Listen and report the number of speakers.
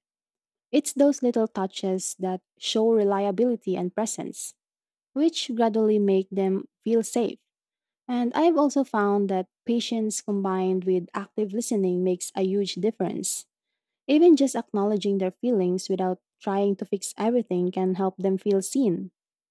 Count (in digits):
1